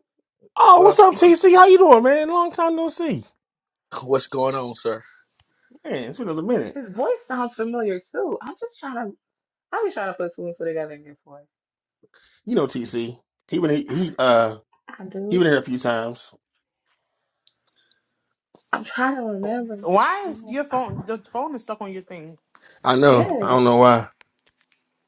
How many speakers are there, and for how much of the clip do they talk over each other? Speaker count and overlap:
four, about 6%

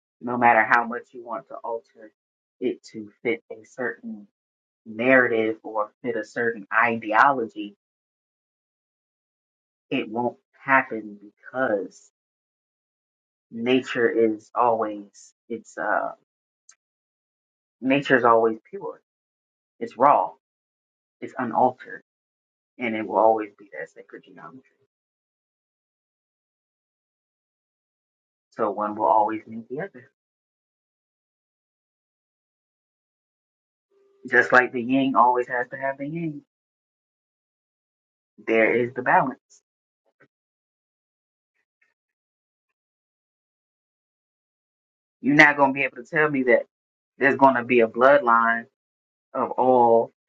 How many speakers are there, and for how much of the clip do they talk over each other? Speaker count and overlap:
one, no overlap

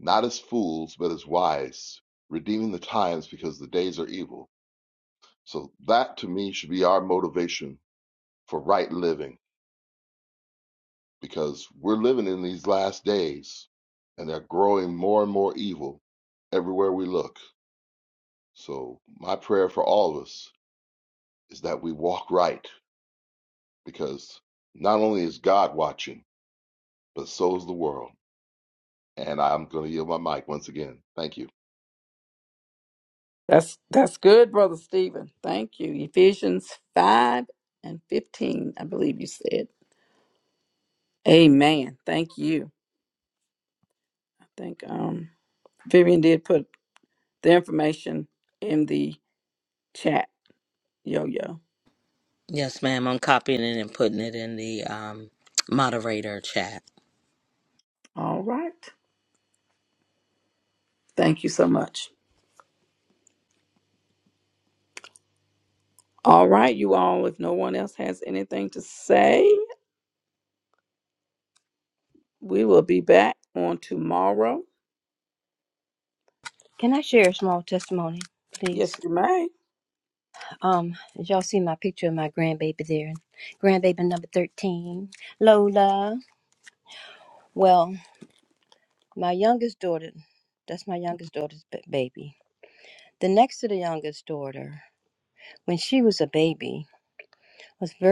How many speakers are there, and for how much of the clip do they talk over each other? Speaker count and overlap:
four, under 1%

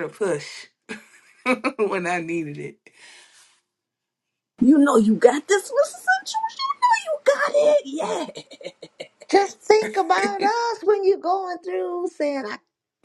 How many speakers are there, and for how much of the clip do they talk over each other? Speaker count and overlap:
three, about 1%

